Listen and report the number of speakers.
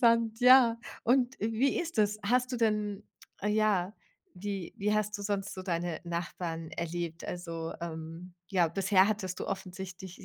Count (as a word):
one